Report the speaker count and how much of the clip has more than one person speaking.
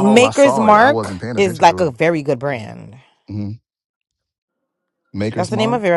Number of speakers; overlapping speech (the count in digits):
2, about 41%